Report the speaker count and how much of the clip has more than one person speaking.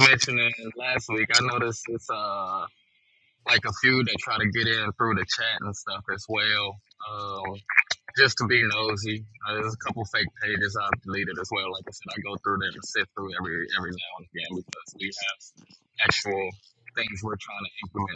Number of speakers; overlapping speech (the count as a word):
one, no overlap